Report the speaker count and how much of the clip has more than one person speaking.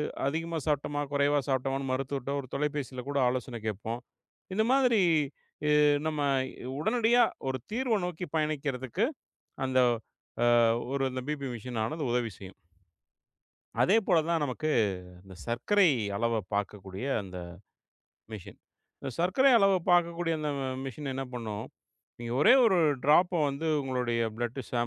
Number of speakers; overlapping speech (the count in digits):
1, no overlap